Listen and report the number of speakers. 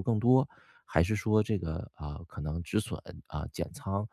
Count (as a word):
one